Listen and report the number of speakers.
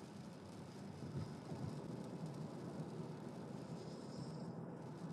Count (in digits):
0